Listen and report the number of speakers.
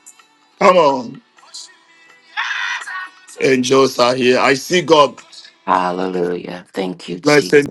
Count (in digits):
2